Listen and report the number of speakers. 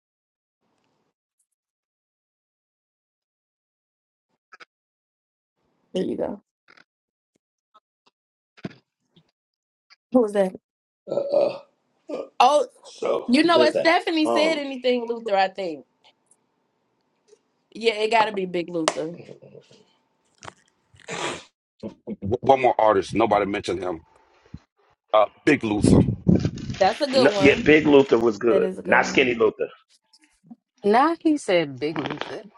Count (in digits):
4